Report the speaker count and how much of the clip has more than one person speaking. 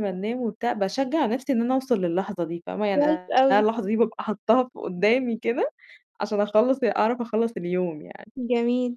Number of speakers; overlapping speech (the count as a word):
two, about 3%